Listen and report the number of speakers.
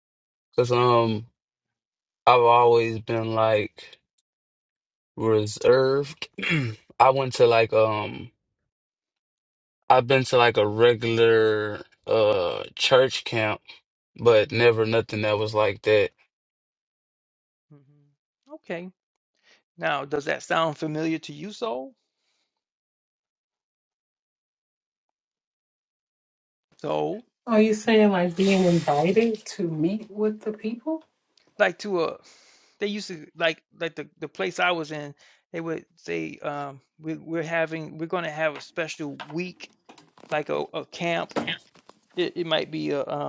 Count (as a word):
three